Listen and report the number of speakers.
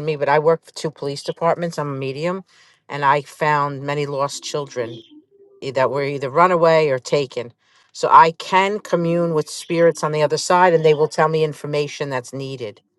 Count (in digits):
1